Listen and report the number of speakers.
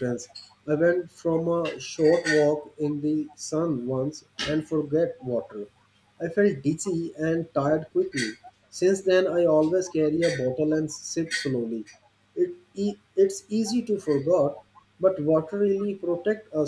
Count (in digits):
1